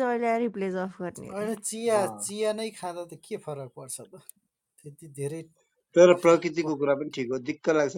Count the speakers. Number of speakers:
3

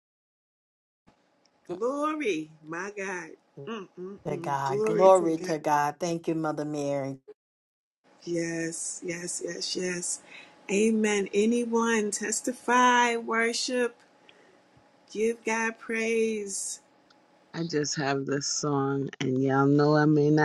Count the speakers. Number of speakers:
3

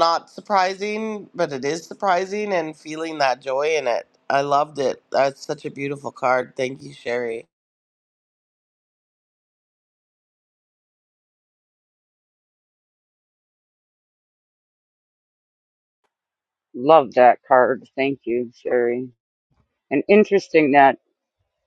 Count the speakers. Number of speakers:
2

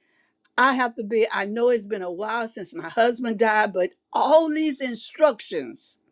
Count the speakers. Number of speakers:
1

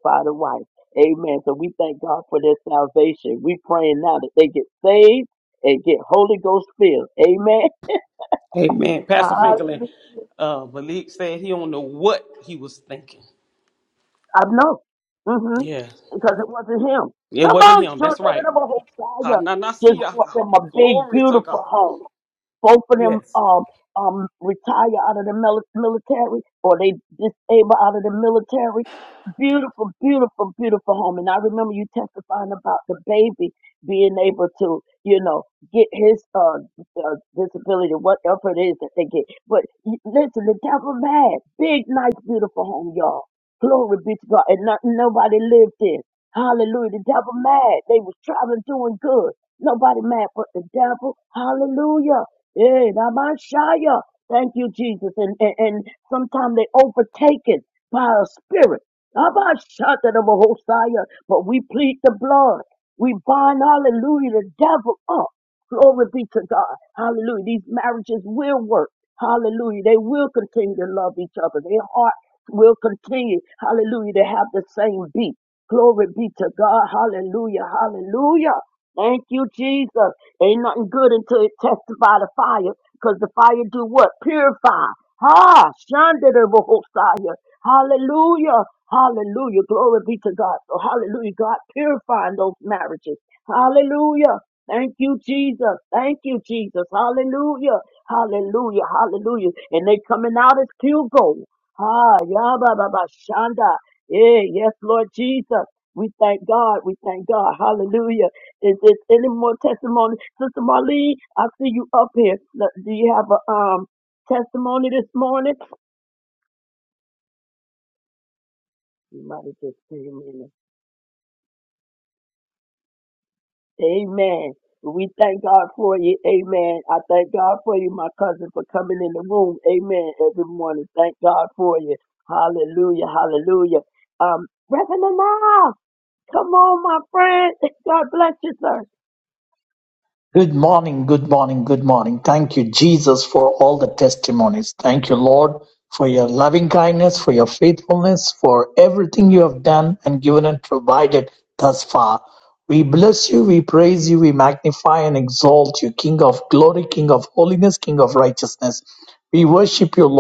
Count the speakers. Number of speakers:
3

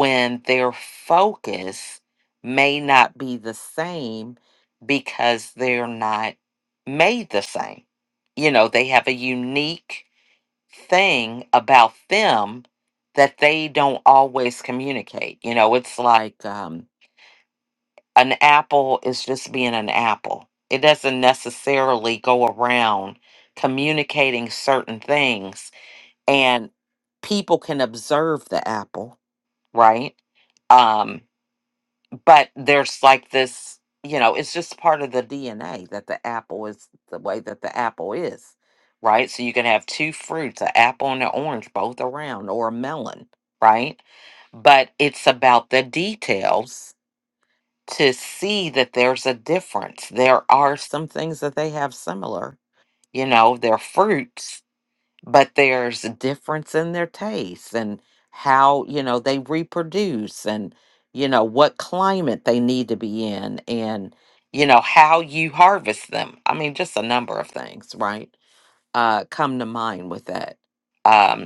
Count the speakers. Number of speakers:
1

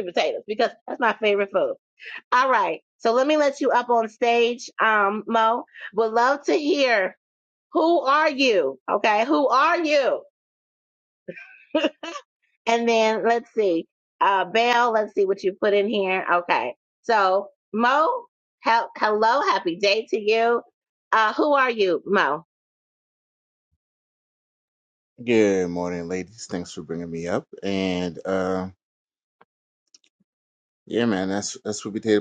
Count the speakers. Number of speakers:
2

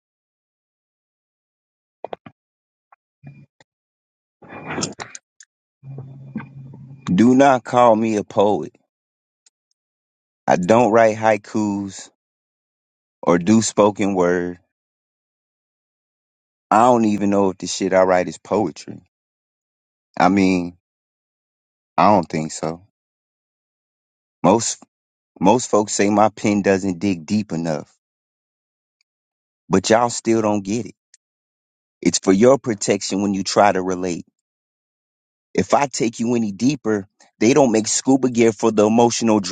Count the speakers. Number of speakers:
1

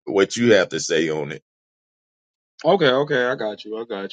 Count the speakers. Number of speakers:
2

